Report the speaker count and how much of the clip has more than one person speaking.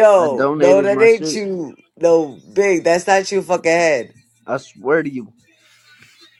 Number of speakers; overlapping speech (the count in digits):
2, about 19%